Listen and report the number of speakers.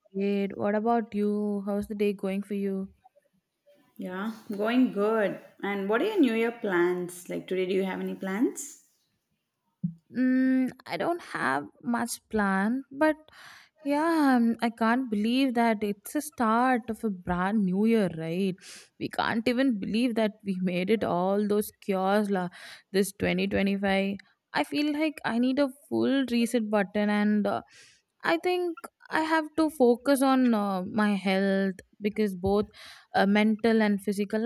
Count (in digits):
2